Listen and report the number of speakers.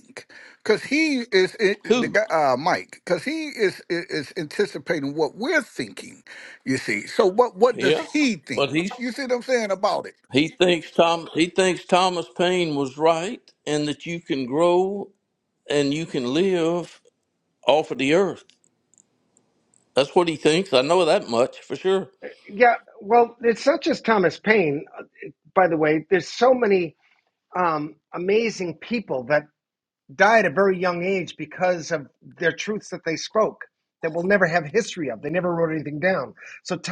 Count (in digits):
3